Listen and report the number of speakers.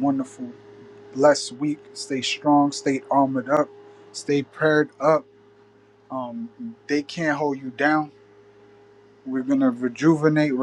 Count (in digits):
1